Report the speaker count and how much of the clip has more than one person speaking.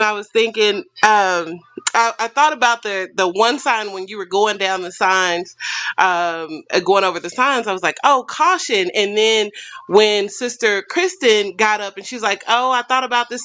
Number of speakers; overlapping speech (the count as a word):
one, no overlap